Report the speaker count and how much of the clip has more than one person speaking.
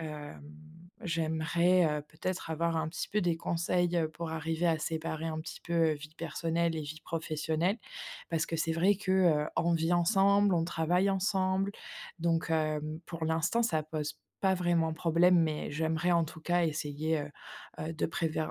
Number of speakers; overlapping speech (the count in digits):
1, no overlap